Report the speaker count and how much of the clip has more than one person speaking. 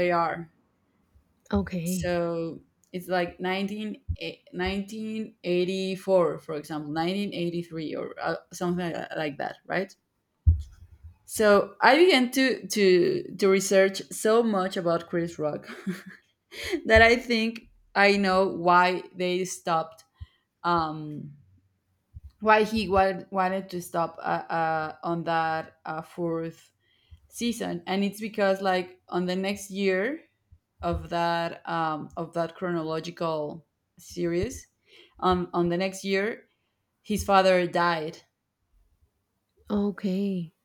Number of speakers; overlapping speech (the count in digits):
2, under 1%